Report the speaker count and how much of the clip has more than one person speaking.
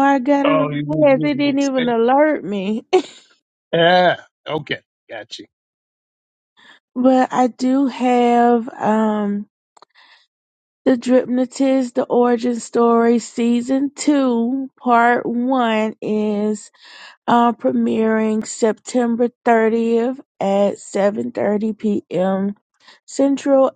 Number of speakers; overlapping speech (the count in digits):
2, about 6%